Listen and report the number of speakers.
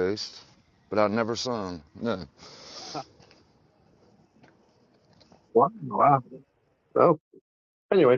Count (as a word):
two